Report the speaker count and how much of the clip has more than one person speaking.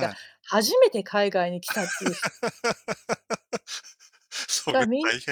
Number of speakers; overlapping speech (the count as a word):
two, about 11%